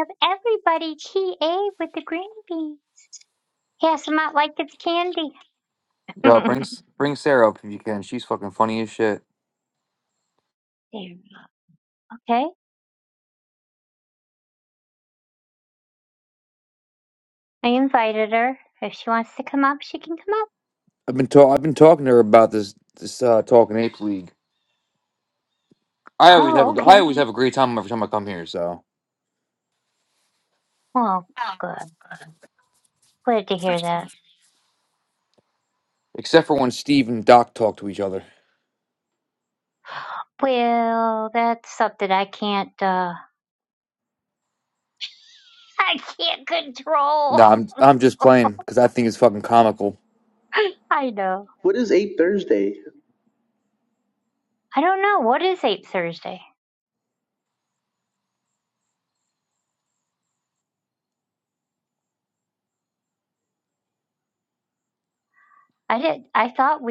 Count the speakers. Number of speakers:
three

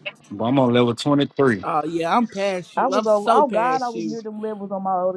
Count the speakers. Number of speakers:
three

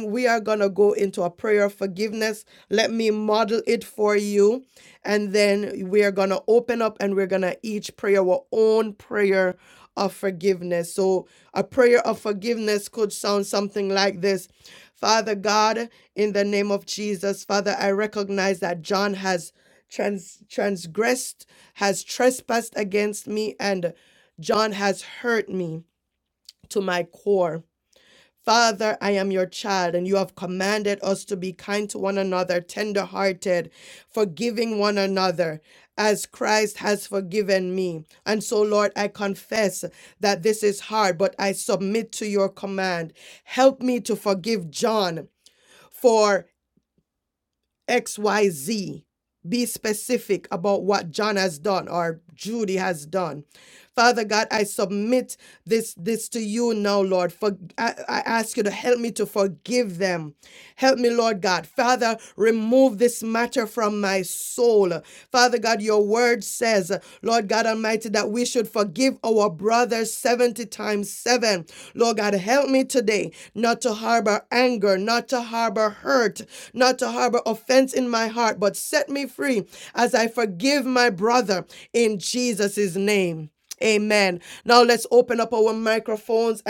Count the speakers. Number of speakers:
one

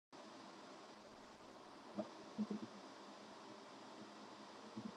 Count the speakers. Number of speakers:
zero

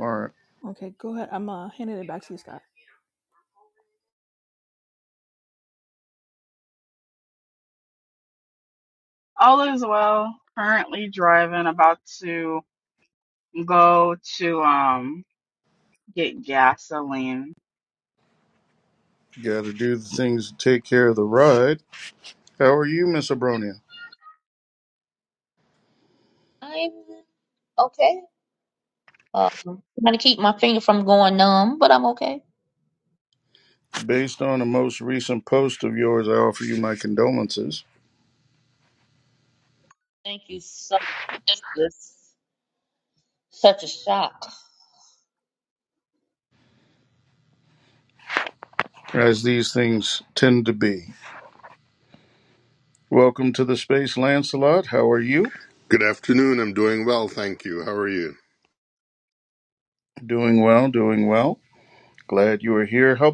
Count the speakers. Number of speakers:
five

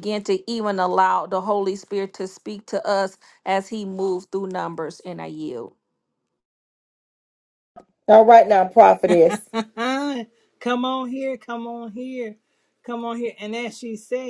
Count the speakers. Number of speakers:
three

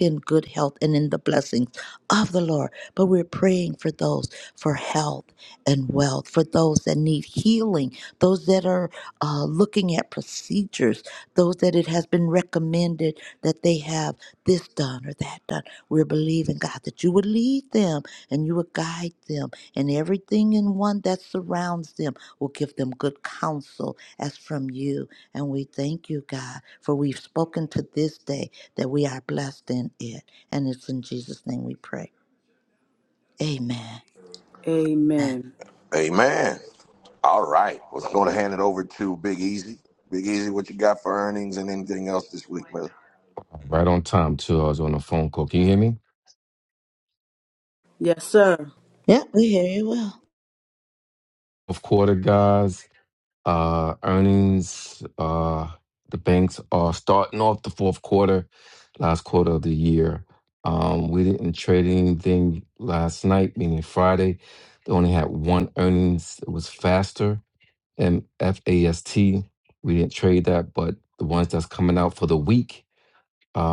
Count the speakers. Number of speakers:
four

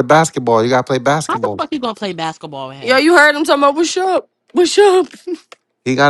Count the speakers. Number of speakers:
three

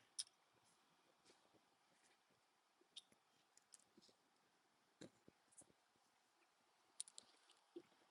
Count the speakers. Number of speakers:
zero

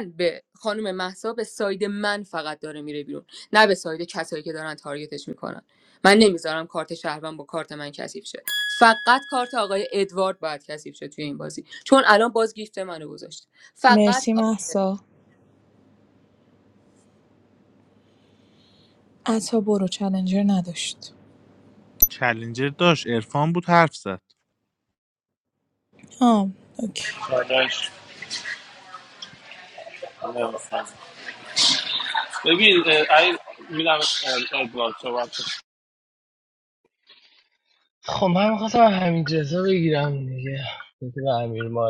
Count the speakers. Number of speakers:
five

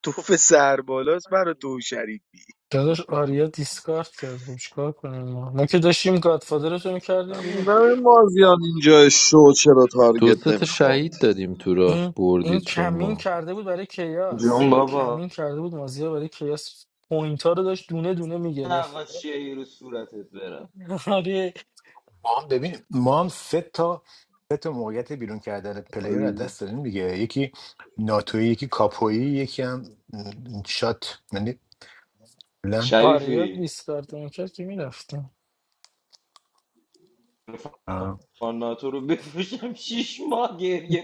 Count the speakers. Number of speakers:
six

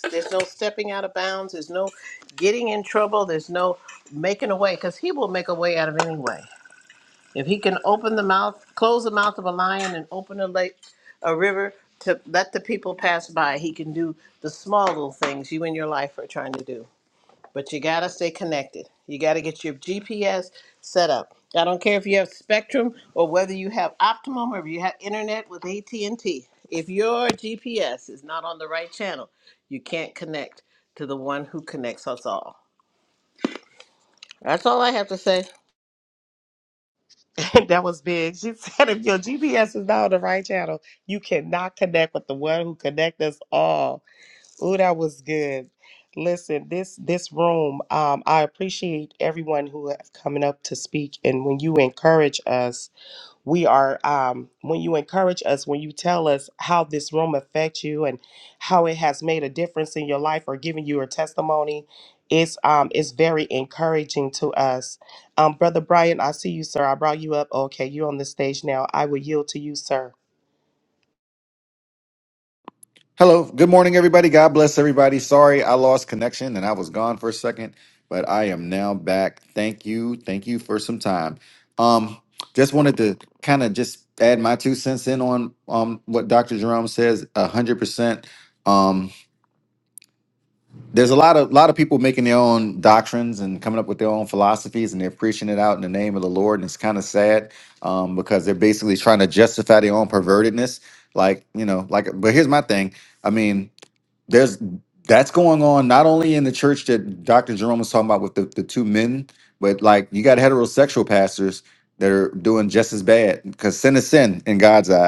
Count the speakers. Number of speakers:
three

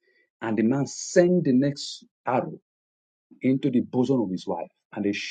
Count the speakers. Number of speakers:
one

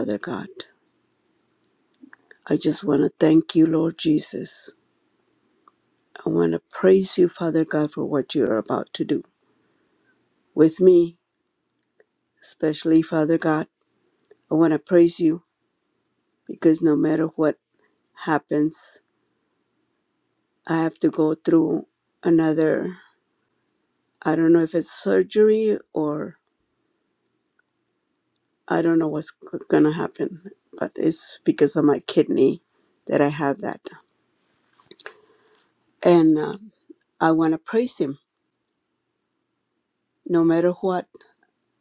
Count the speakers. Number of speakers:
one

